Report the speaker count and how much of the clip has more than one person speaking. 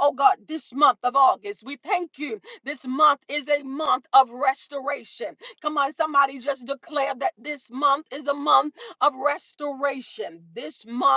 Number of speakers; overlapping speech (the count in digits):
1, no overlap